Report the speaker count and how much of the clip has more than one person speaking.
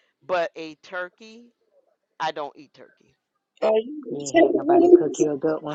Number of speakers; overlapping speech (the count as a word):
three, about 21%